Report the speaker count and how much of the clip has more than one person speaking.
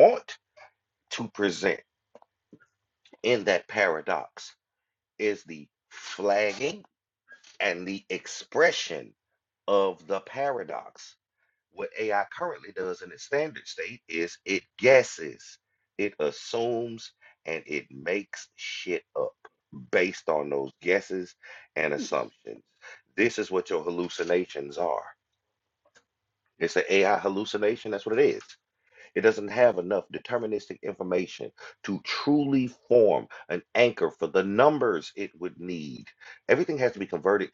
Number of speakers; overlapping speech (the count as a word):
one, no overlap